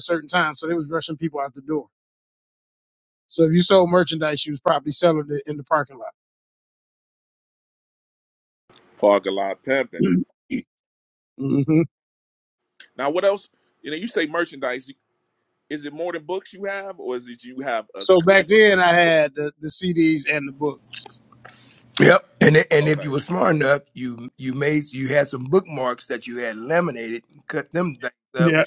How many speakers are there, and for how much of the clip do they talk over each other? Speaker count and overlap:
three, about 3%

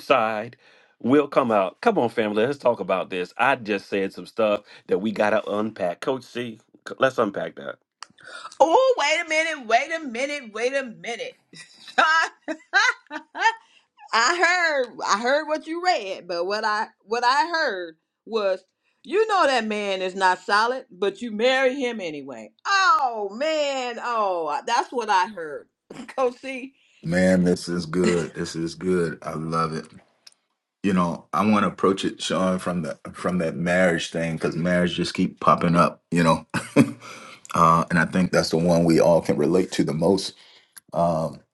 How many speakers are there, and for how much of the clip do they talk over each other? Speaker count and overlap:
three, no overlap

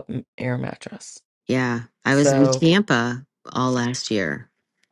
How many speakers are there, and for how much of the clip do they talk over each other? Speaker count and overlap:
two, about 11%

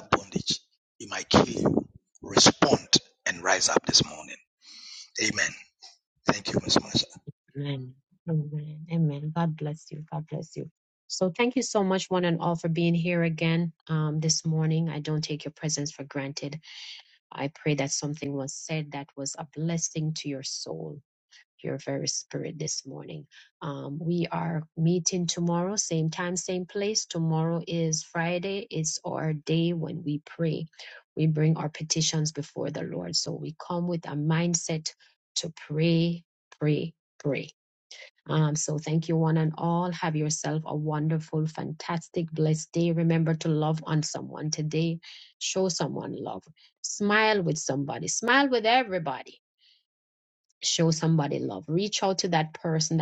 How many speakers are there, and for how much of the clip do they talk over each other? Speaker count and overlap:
two, no overlap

